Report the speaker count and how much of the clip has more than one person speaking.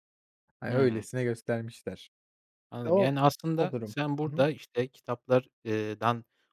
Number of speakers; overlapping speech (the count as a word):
two, about 17%